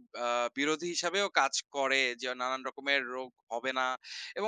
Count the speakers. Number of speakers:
1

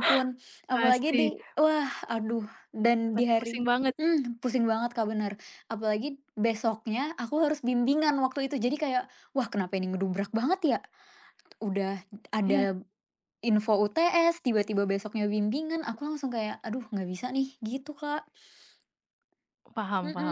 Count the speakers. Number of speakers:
2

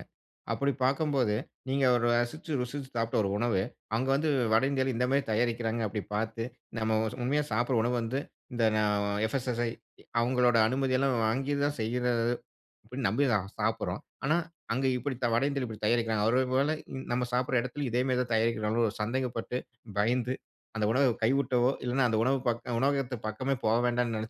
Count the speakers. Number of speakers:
1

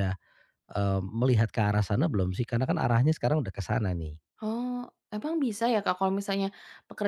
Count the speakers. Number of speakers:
2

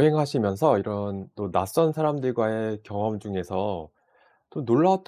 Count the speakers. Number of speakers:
1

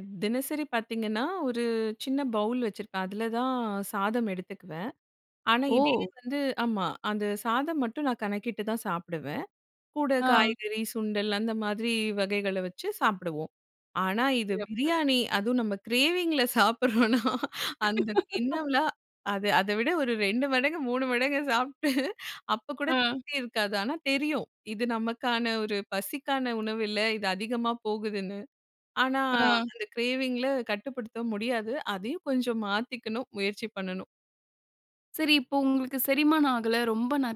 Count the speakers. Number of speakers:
2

